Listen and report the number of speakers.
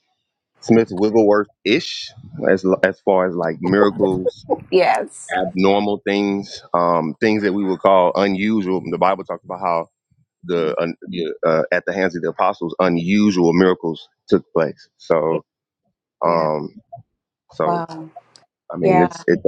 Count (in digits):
2